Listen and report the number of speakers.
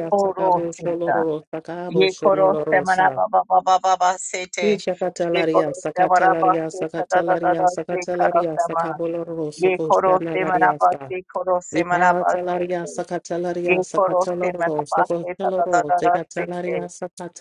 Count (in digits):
2